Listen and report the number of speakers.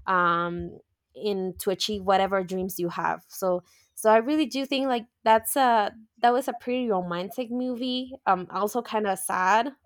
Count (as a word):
one